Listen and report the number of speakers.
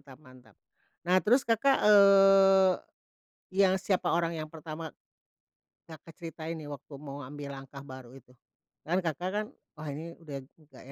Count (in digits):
1